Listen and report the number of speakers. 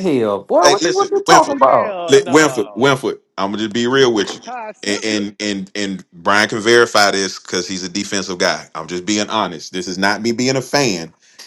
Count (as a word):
three